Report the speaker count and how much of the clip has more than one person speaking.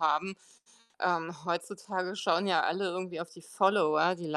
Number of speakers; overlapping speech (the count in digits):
1, no overlap